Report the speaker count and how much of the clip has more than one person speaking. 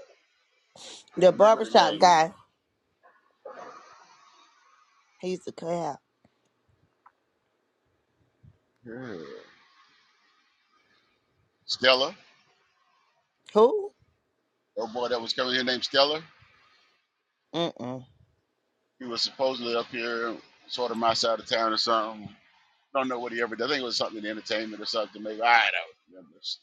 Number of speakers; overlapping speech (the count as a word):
two, about 4%